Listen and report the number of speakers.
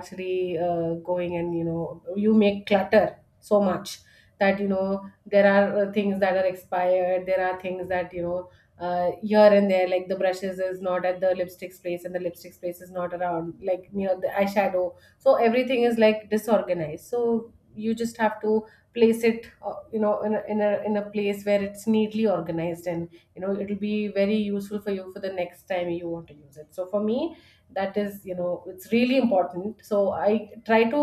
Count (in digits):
1